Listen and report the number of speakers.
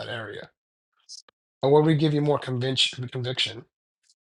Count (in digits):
1